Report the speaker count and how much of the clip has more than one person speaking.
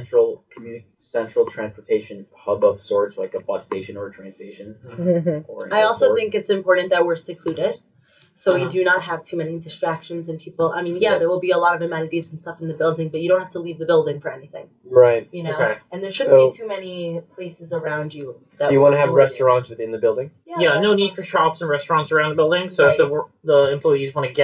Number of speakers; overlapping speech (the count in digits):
4, about 17%